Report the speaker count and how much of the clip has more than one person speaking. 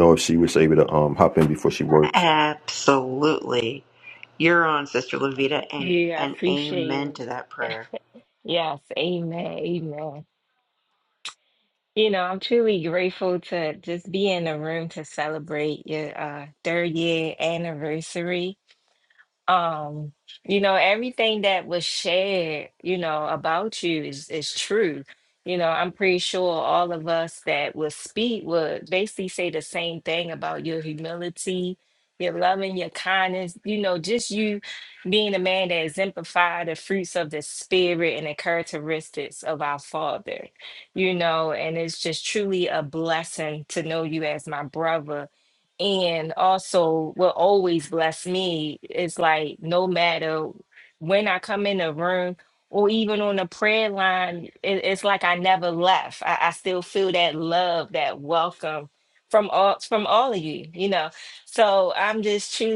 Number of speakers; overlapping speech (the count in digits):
3, about 2%